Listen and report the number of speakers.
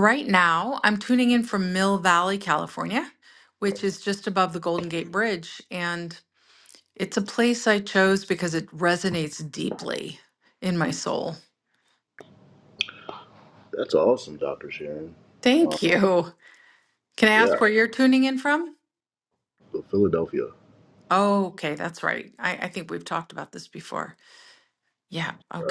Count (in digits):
2